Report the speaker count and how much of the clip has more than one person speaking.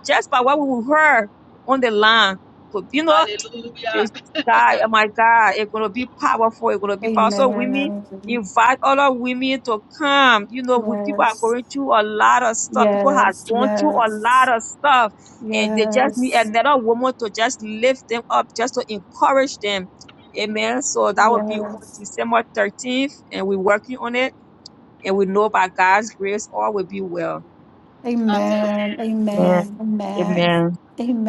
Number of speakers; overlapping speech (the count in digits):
3, about 18%